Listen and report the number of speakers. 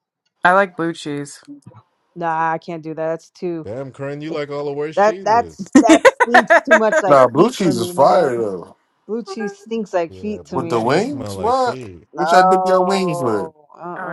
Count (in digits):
4